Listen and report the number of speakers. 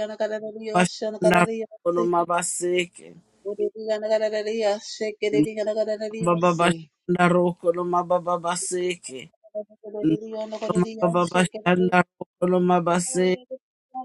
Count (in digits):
2